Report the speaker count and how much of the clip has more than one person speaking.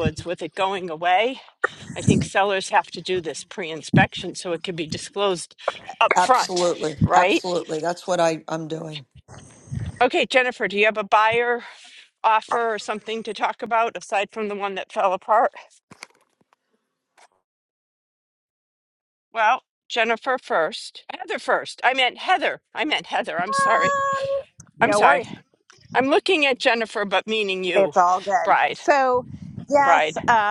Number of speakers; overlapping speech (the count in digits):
3, about 9%